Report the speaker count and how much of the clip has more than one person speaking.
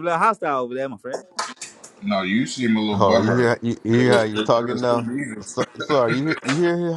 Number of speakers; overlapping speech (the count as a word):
three, about 27%